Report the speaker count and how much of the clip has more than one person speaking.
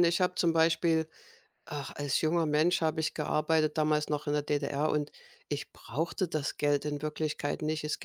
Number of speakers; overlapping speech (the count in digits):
1, no overlap